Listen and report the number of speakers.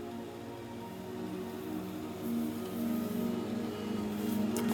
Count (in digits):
0